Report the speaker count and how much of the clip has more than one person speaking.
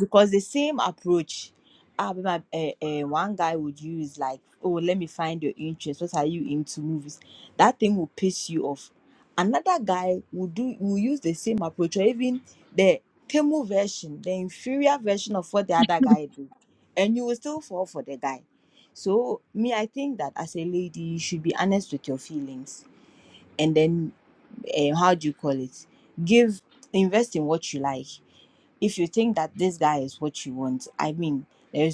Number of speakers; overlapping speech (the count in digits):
1, no overlap